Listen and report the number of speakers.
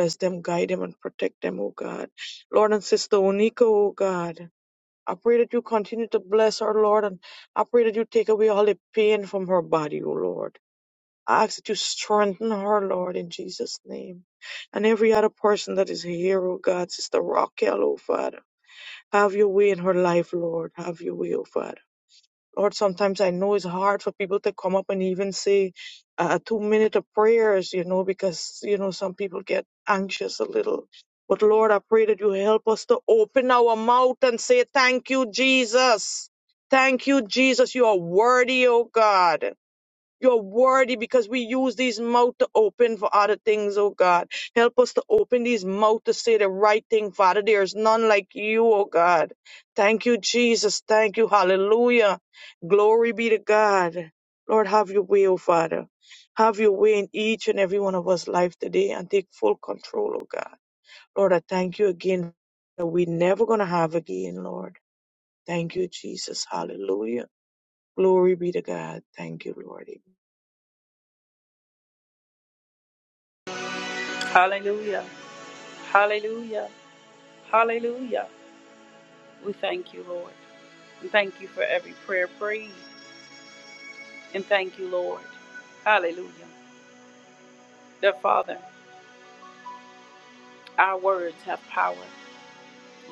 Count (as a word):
two